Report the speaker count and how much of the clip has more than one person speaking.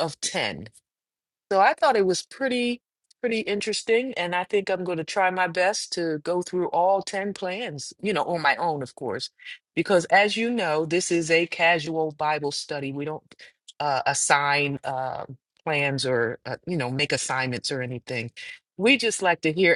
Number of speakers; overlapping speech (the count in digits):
1, no overlap